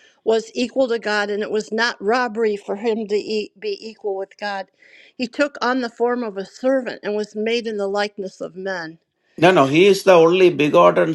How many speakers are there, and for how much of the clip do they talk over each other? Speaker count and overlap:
2, no overlap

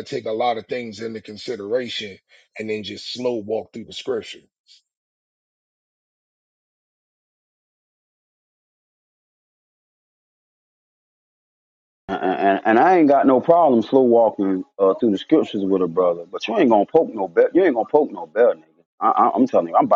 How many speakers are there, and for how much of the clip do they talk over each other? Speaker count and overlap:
2, no overlap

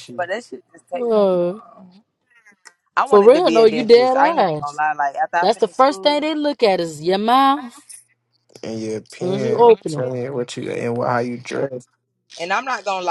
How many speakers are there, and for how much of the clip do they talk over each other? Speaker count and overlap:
3, about 29%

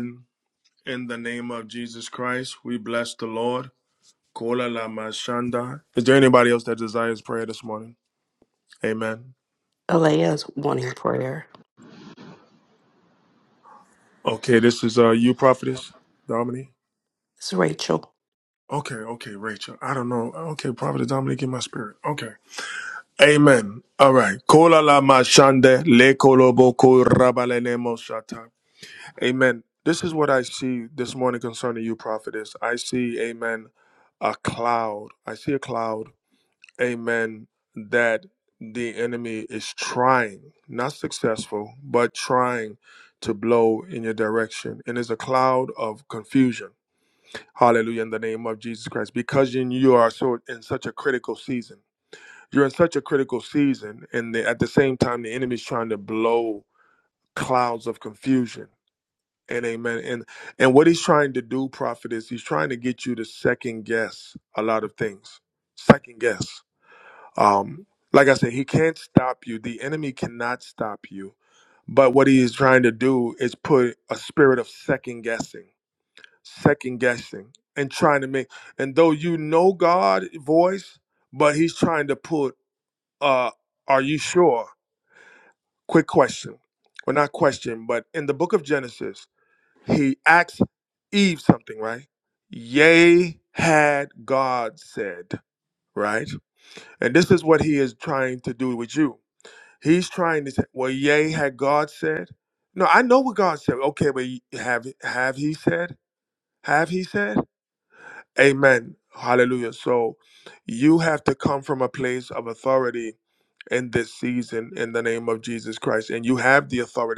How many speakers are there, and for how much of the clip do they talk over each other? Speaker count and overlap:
2, no overlap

